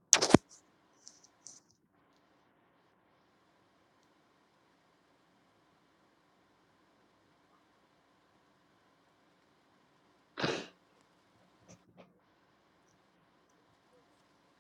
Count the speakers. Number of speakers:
0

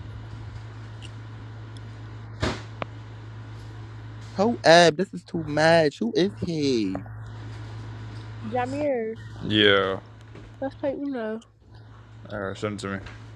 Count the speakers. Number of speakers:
3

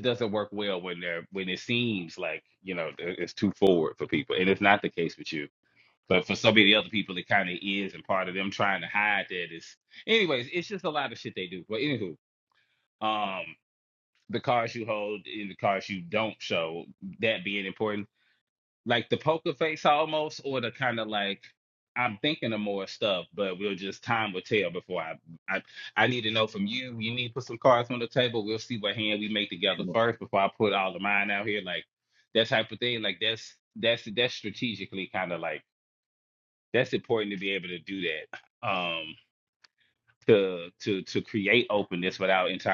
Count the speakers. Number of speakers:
1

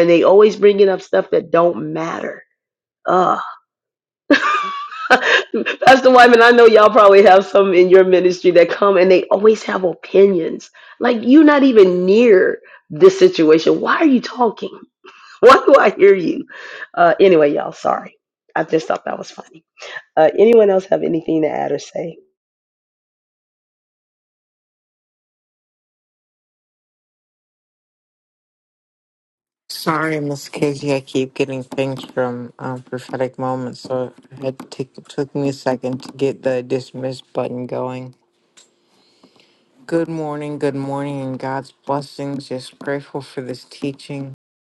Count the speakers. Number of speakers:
2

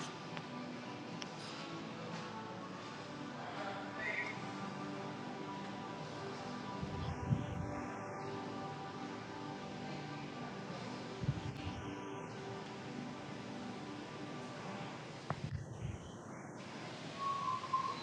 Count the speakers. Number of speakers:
0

